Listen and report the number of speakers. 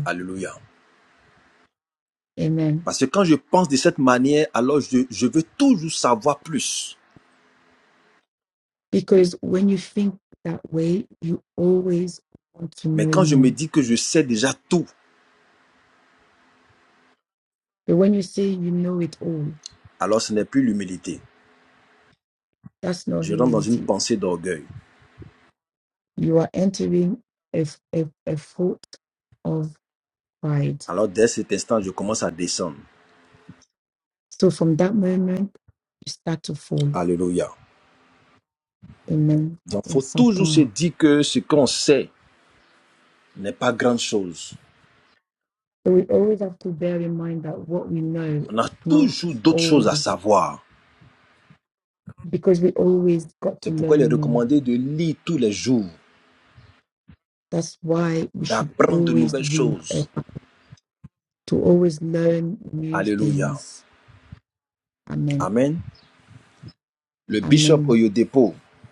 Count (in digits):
2